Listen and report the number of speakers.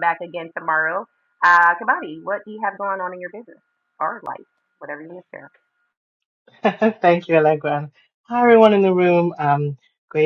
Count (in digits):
2